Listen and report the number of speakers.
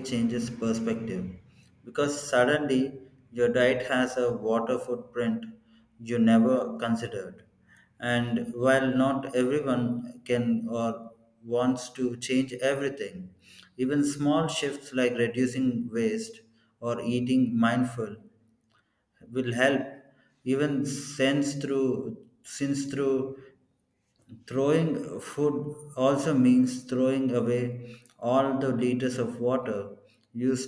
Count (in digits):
1